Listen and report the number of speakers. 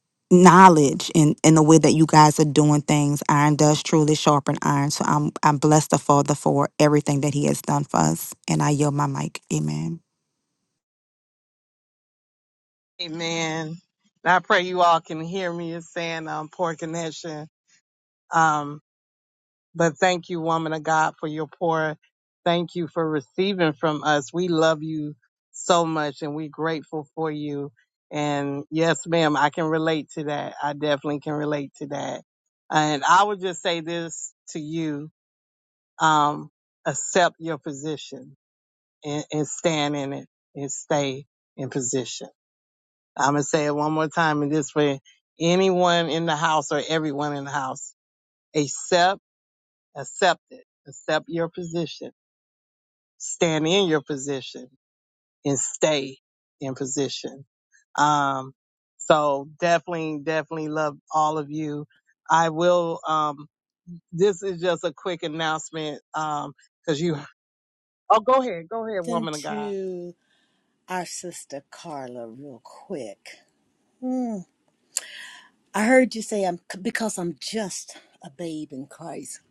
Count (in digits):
3